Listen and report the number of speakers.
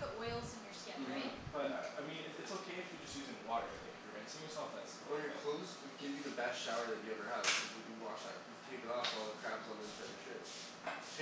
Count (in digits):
3